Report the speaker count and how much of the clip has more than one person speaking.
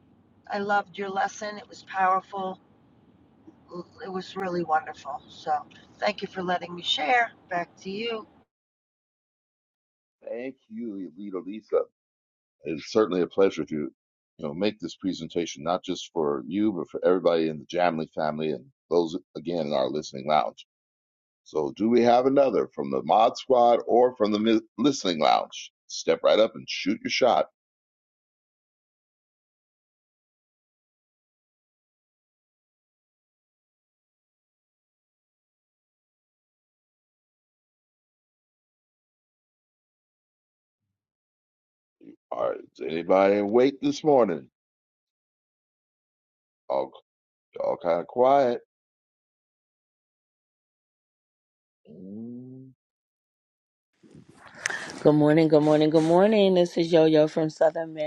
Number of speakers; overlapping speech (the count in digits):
3, no overlap